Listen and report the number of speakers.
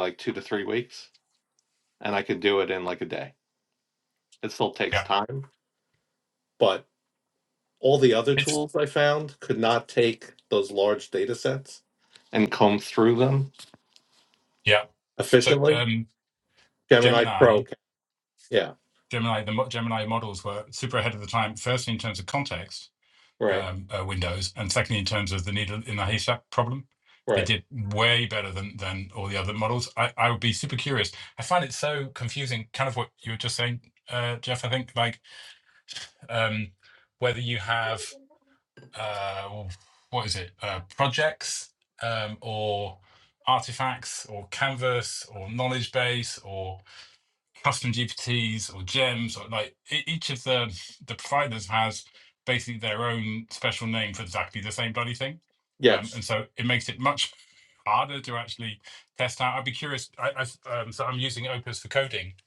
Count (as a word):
two